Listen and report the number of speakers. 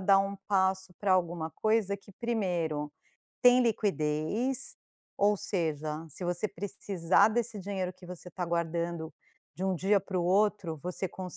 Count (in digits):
1